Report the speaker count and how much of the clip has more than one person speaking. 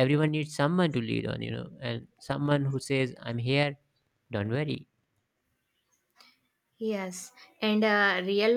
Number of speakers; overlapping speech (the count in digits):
2, no overlap